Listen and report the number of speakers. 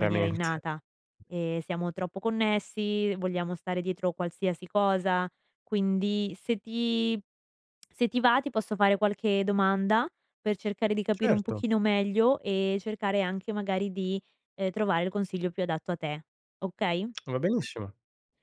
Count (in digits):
2